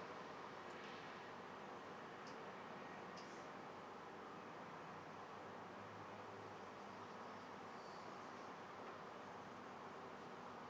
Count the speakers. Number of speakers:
zero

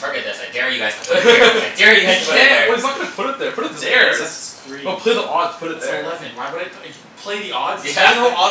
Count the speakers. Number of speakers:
three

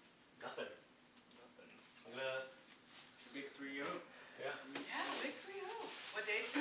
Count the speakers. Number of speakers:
three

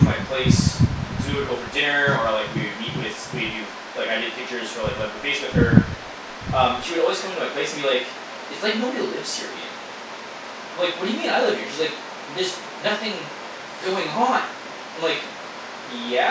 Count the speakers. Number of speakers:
one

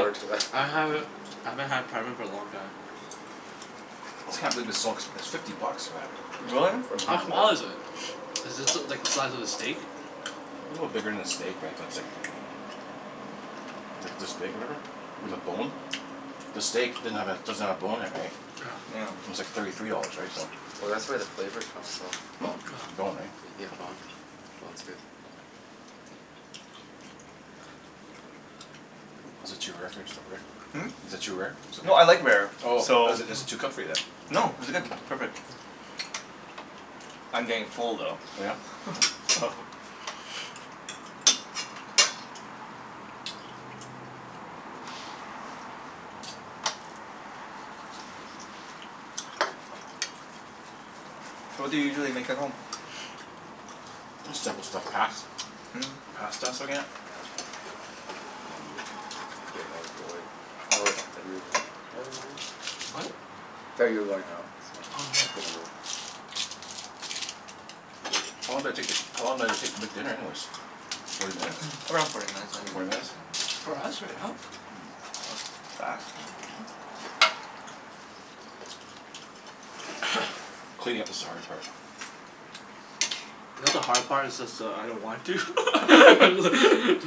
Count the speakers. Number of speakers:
four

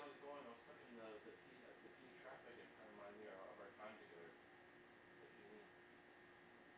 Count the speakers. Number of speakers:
one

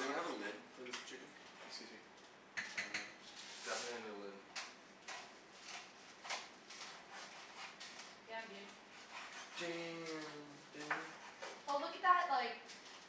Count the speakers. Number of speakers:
three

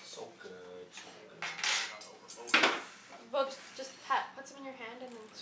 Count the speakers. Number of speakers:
three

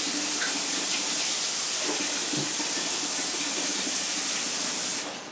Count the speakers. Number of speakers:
zero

